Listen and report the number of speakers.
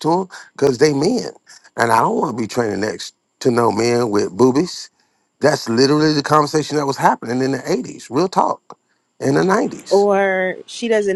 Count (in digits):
2